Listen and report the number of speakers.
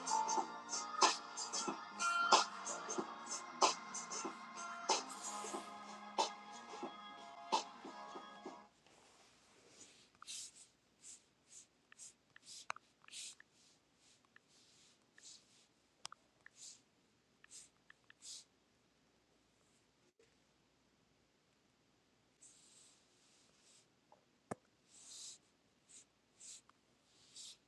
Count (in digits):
0